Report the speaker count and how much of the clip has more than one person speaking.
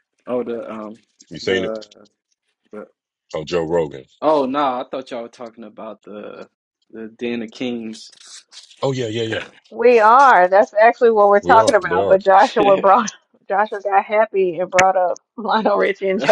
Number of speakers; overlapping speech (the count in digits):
3, about 7%